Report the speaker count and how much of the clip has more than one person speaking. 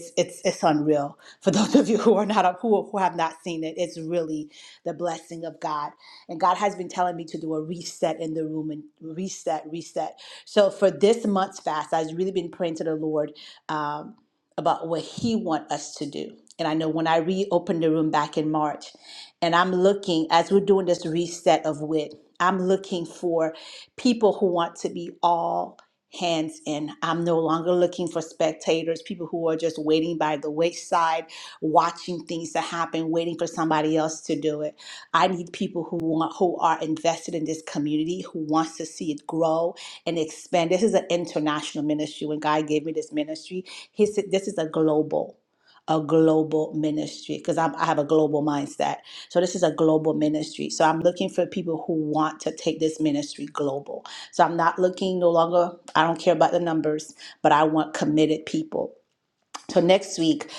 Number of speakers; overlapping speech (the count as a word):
one, no overlap